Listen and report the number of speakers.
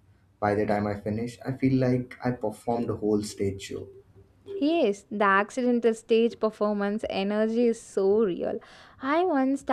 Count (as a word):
two